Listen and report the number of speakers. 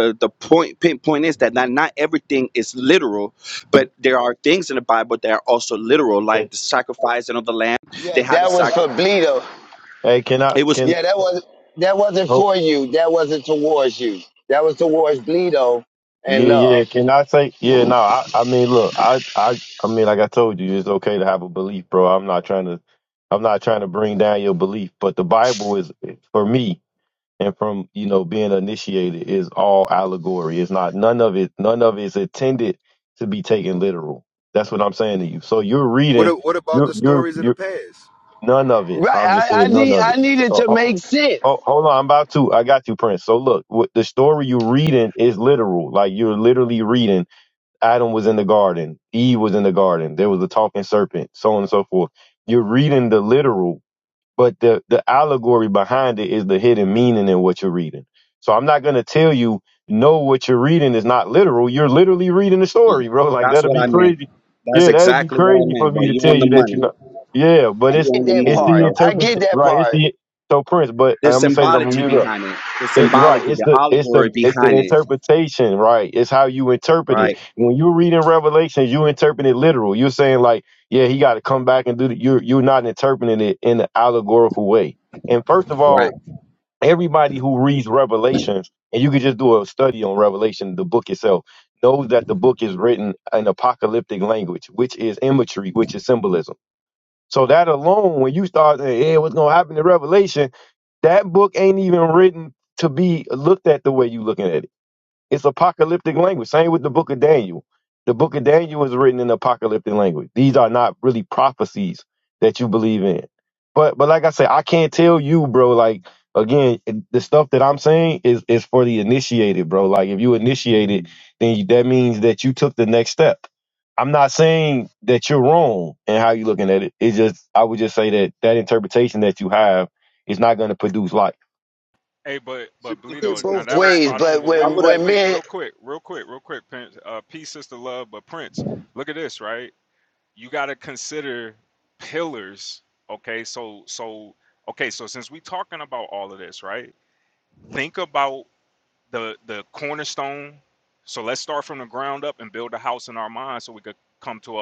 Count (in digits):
5